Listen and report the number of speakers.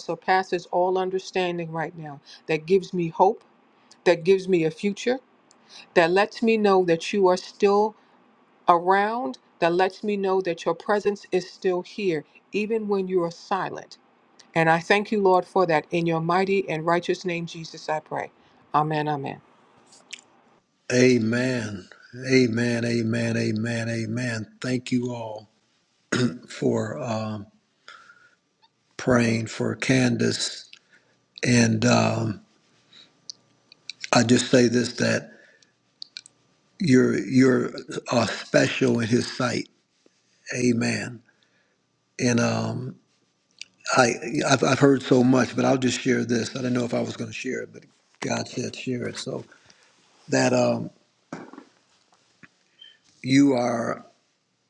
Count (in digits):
2